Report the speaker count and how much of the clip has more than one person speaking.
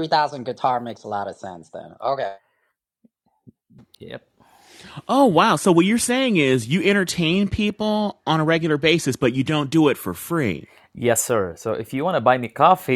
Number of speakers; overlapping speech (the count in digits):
3, no overlap